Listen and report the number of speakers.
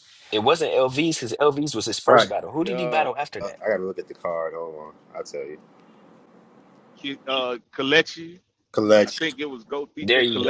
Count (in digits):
3